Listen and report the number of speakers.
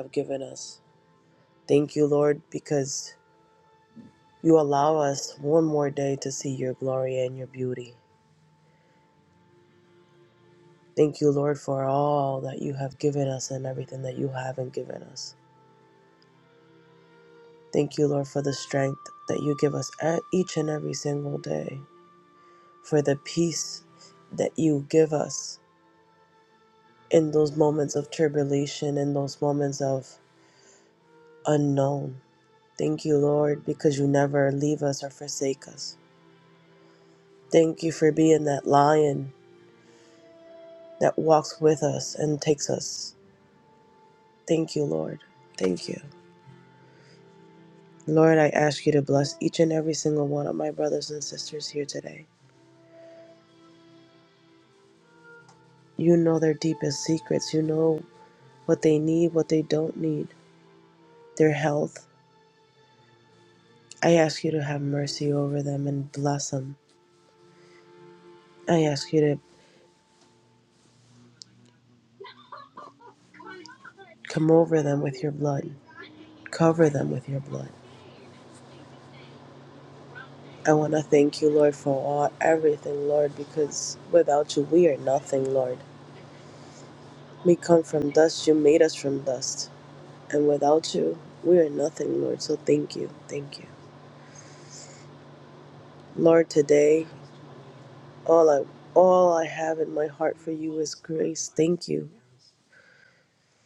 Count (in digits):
1